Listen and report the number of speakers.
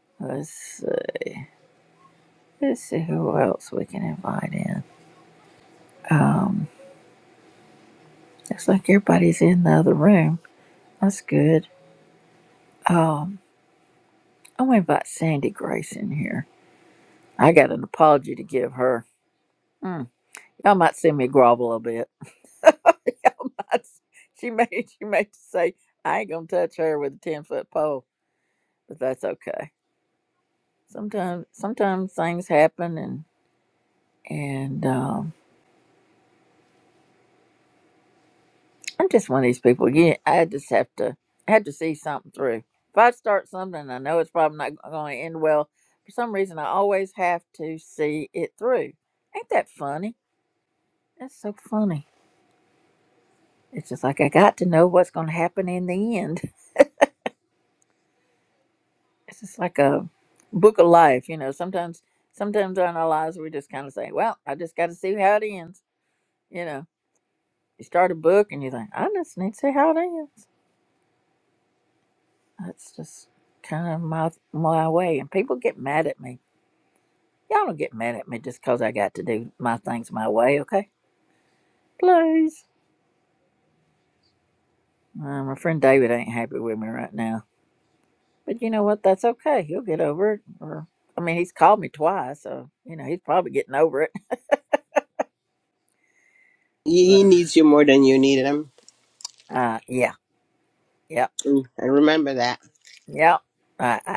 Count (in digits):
2